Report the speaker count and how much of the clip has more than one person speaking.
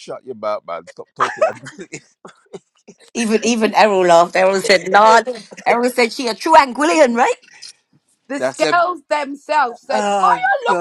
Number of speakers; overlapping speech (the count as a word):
three, about 14%